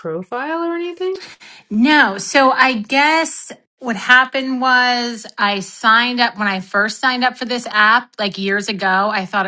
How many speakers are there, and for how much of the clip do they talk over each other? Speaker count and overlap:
2, no overlap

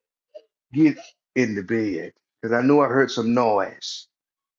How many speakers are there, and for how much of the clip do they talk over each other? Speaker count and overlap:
1, no overlap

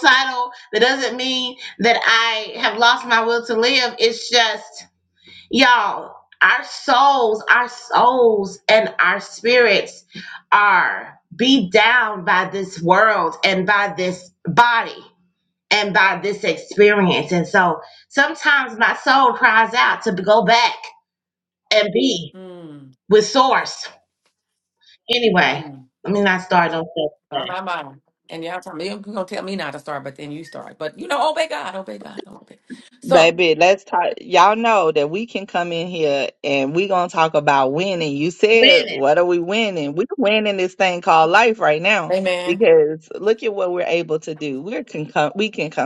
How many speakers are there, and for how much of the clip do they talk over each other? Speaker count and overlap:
3, about 2%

